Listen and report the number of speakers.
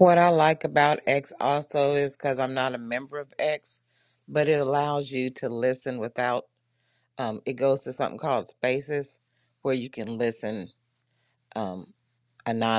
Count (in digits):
1